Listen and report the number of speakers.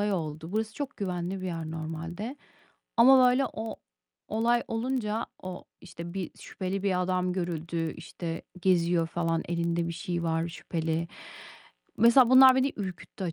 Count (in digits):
1